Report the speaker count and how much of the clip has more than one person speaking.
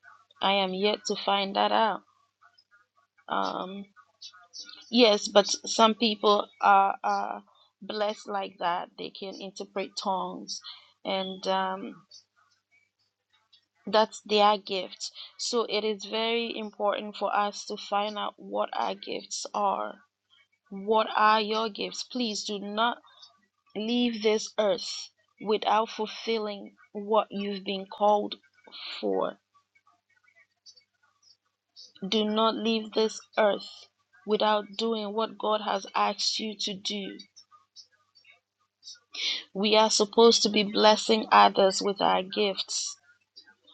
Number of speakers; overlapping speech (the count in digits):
1, no overlap